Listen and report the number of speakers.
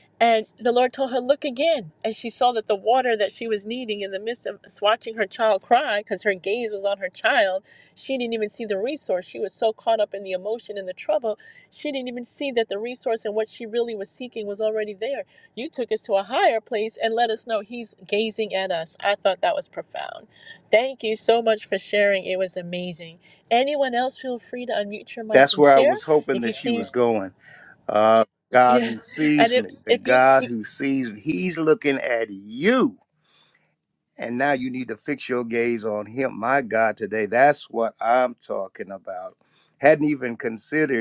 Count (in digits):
2